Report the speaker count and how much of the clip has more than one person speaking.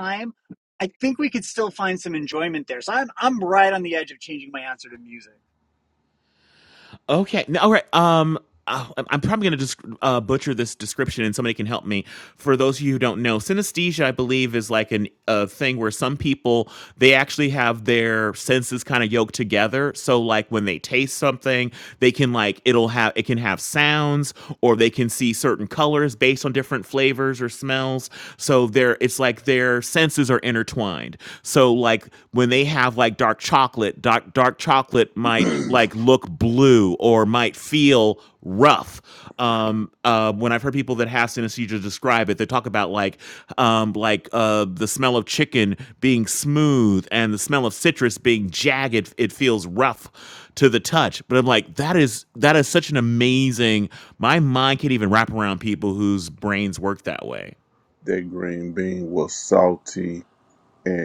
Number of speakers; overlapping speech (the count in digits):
3, about 1%